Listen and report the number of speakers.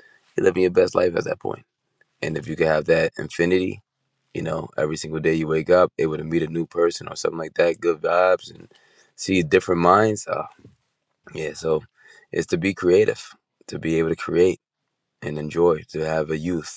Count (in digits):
1